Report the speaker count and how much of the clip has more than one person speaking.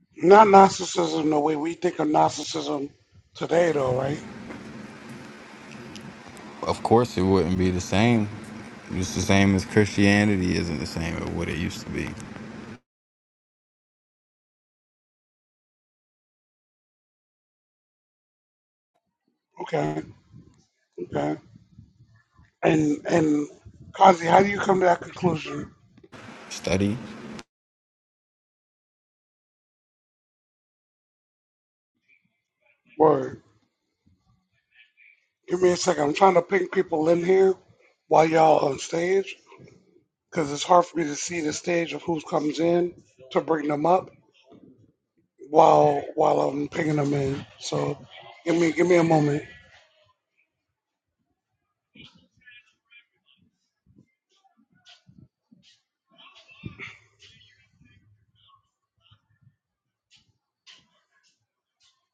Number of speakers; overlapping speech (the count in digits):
2, no overlap